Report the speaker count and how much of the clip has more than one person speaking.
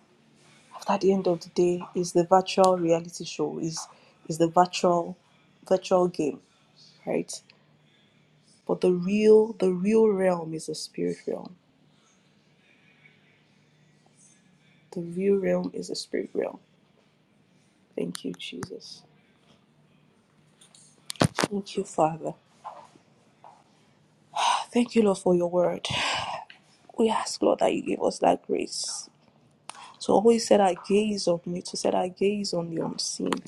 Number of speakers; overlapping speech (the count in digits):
1, no overlap